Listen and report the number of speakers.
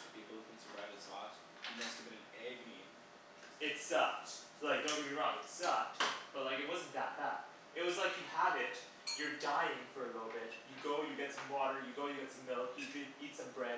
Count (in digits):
2